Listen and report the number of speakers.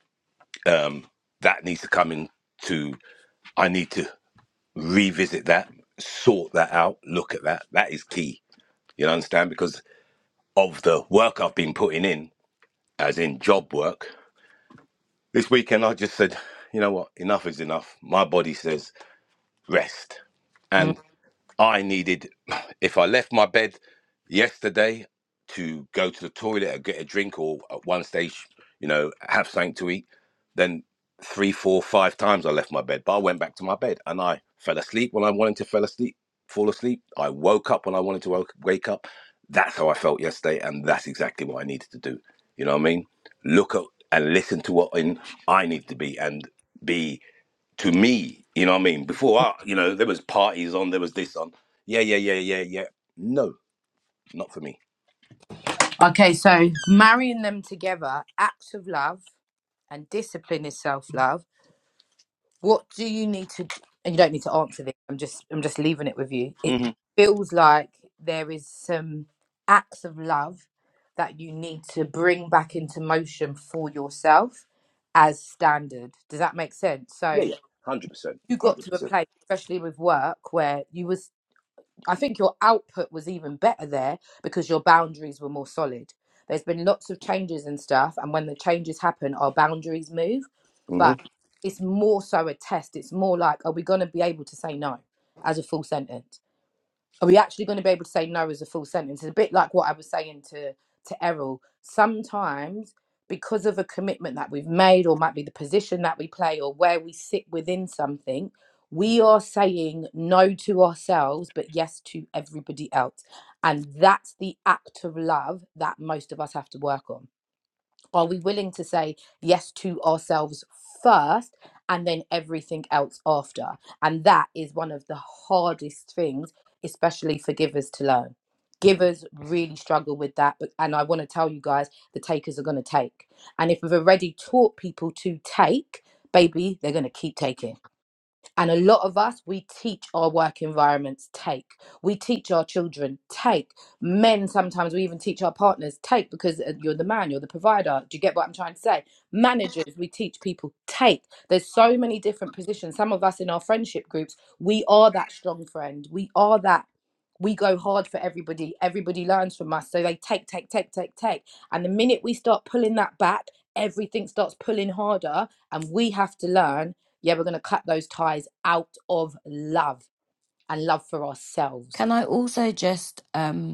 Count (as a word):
three